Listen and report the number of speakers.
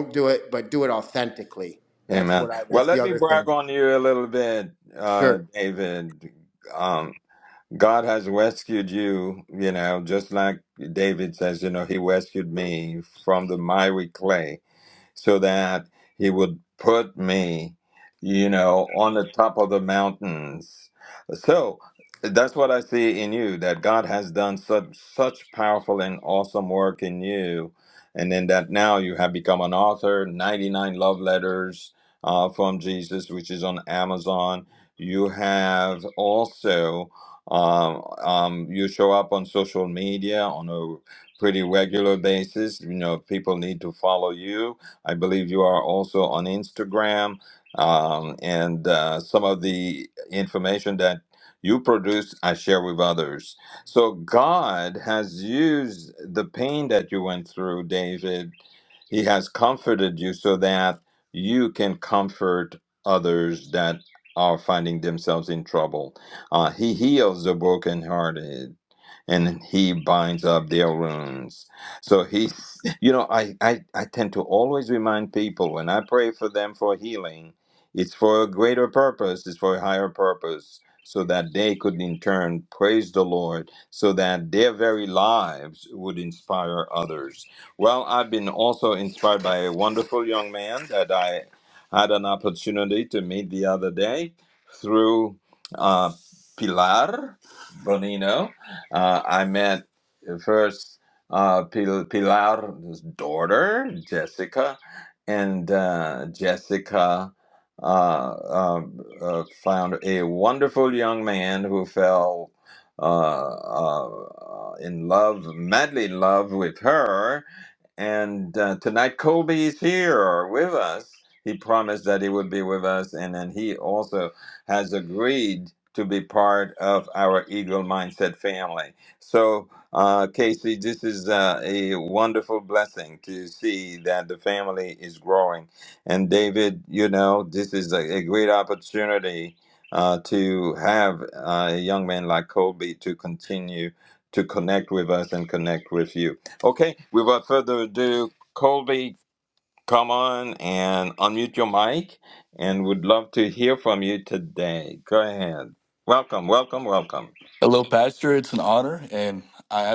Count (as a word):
three